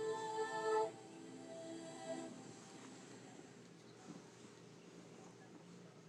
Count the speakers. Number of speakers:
zero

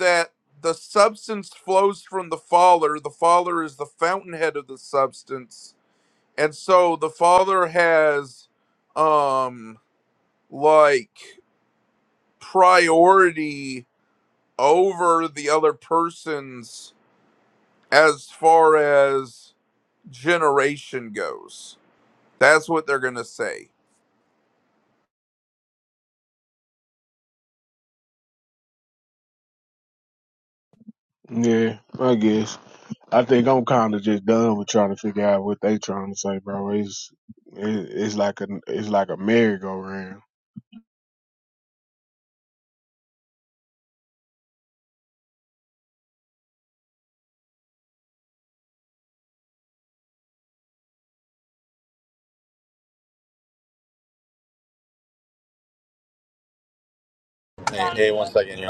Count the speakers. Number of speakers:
three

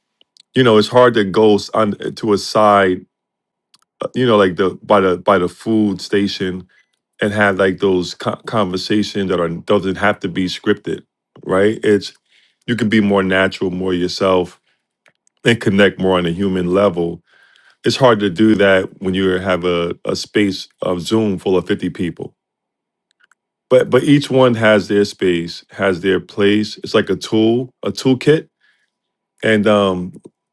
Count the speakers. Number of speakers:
one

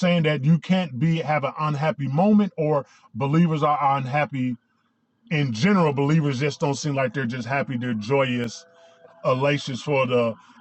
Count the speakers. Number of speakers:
one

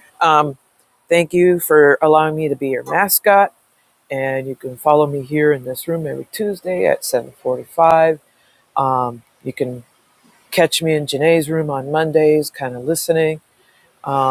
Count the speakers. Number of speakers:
one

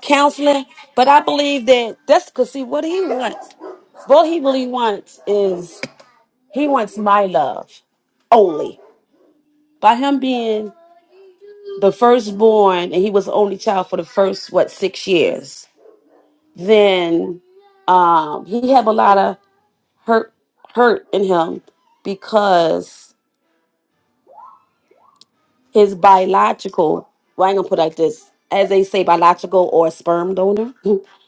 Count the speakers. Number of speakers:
one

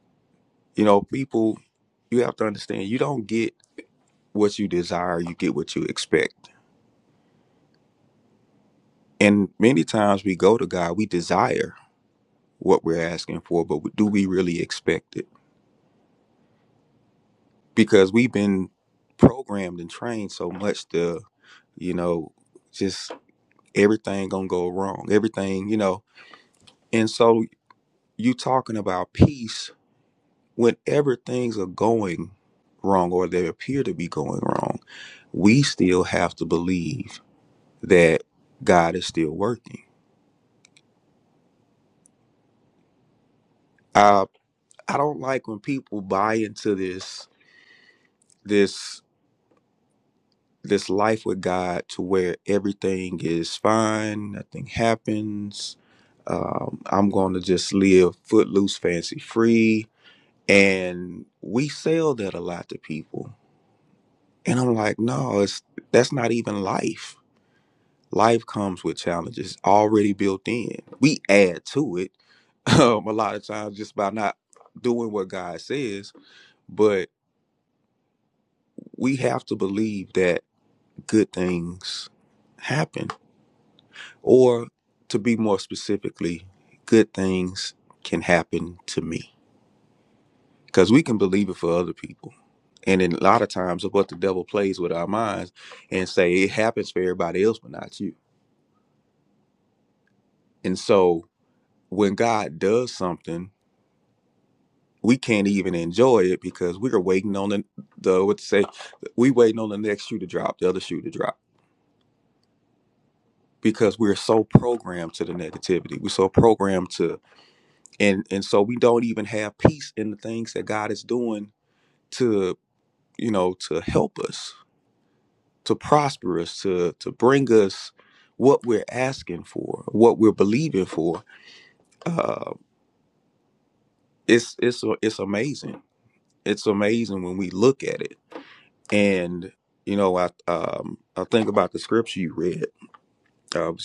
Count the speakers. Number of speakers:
one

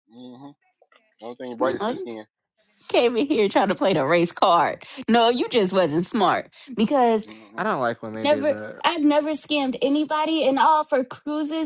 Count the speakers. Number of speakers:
three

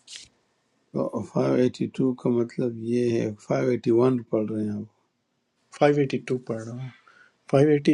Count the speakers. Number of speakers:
two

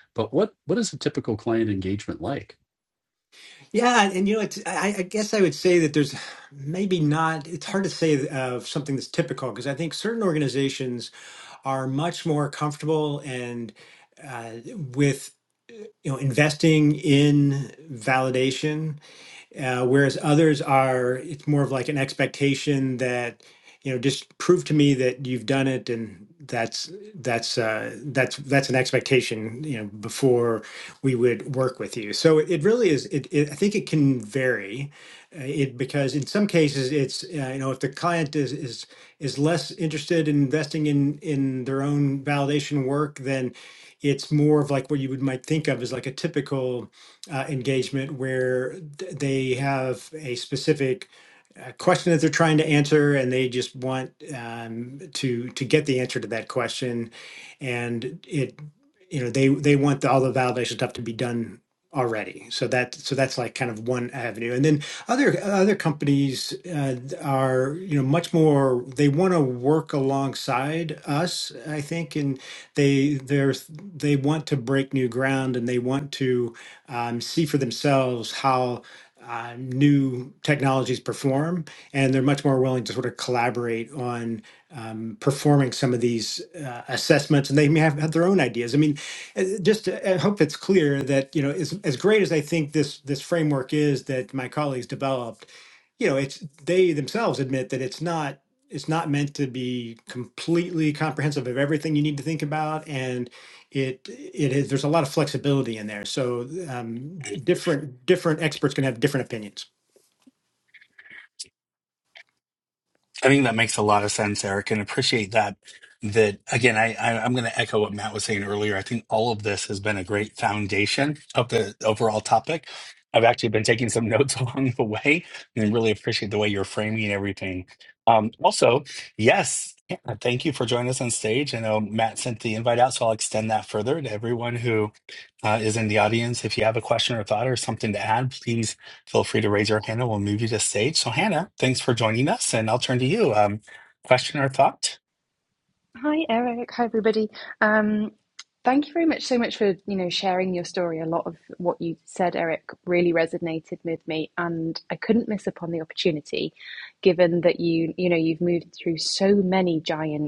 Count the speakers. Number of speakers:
four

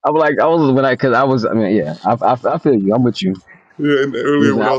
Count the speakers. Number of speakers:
two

